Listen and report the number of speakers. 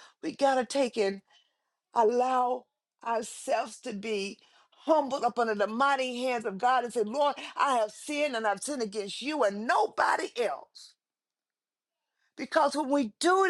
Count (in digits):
1